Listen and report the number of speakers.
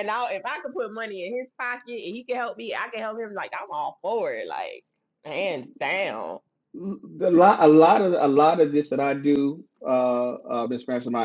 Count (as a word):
two